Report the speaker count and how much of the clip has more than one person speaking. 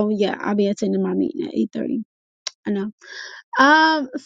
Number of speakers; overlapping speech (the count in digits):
1, no overlap